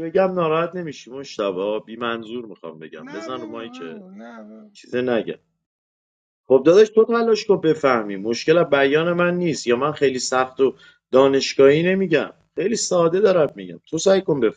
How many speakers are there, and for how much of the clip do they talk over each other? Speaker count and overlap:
2, about 7%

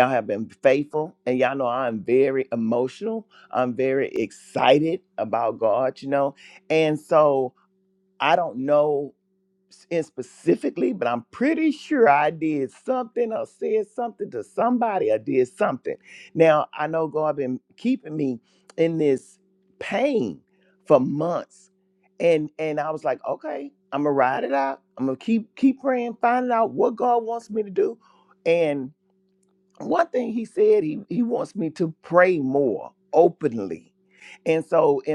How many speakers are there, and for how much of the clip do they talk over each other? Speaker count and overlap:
1, no overlap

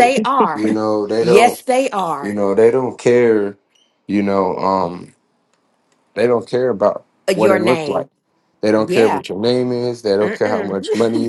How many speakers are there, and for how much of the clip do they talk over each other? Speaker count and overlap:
2, about 22%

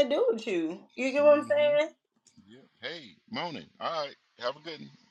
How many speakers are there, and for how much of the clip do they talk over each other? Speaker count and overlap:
2, about 11%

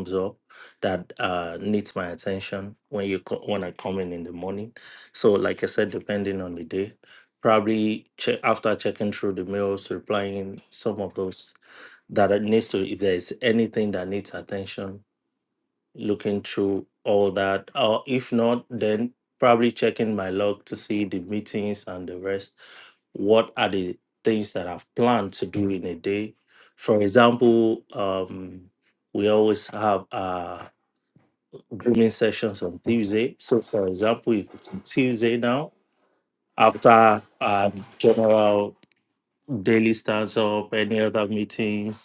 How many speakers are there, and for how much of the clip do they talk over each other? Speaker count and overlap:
1, no overlap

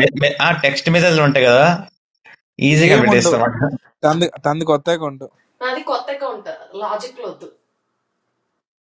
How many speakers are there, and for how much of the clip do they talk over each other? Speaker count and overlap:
3, about 7%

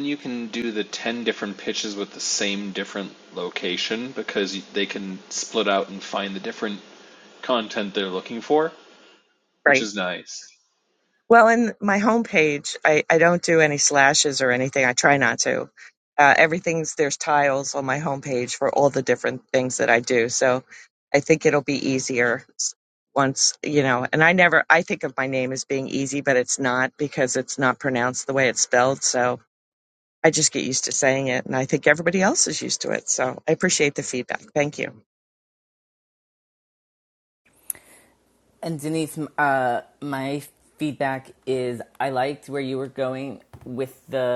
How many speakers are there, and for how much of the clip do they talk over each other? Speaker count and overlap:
3, under 1%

